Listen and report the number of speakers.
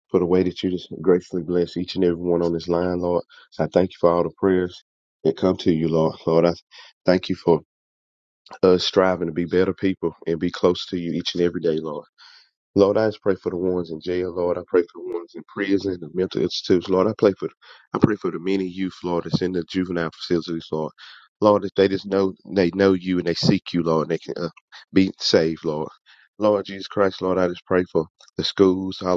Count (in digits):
1